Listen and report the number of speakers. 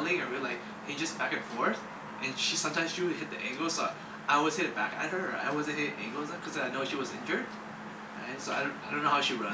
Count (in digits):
1